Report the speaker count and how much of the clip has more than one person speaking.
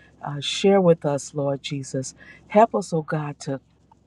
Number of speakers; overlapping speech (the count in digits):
1, no overlap